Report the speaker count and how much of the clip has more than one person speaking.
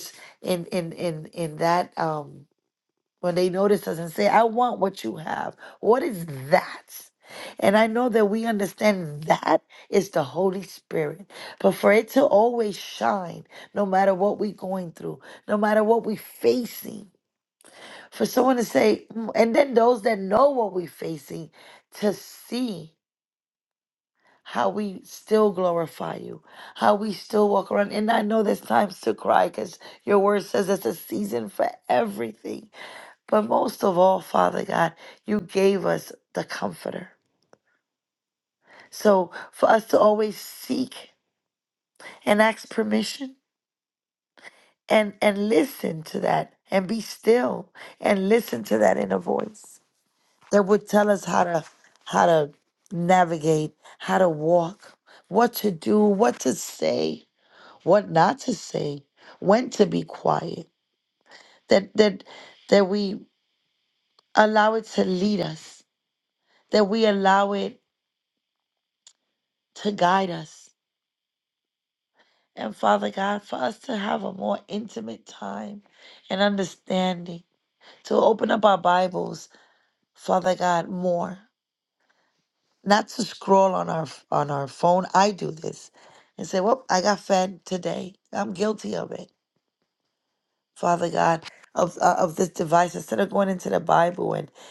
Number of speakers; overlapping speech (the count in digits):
1, no overlap